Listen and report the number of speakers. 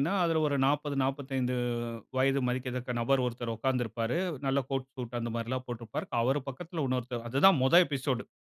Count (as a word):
one